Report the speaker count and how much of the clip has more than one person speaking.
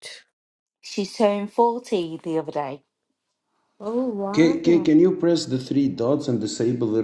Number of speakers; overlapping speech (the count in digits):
3, about 8%